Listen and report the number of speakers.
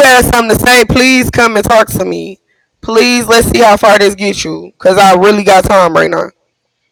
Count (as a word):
one